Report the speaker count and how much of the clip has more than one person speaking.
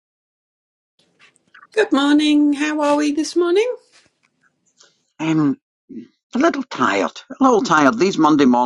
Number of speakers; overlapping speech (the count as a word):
two, no overlap